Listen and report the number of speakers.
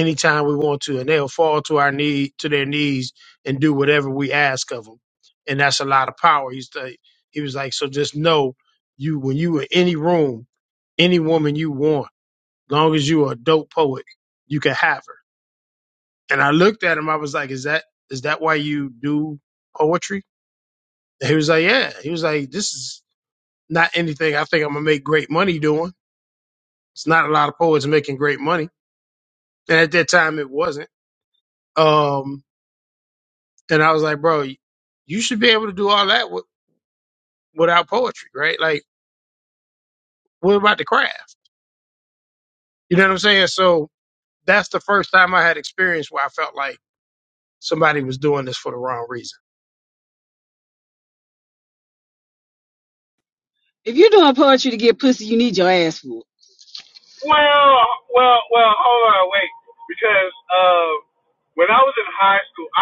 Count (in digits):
3